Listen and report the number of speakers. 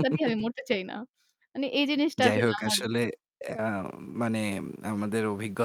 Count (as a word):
two